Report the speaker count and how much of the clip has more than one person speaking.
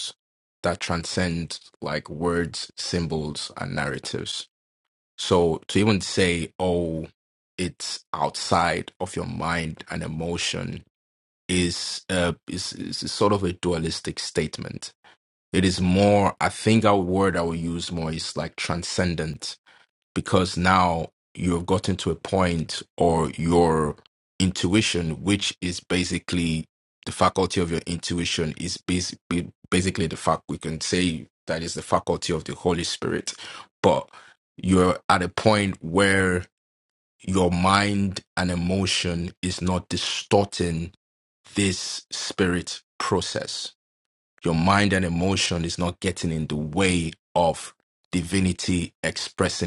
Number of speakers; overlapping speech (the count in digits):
1, no overlap